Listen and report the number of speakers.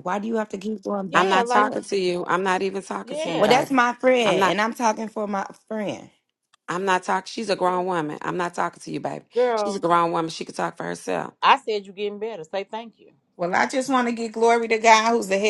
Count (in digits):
4